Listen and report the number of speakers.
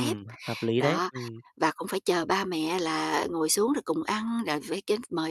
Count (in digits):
2